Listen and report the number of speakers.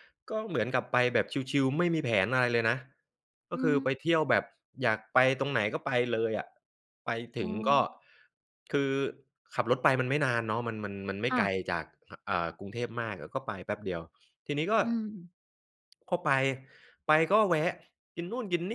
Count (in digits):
2